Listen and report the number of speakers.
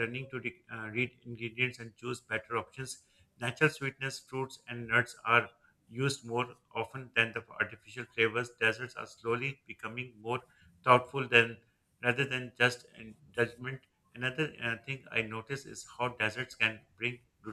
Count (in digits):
1